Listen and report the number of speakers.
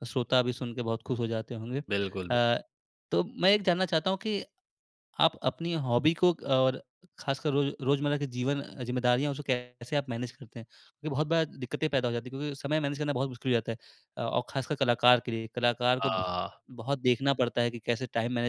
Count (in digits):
2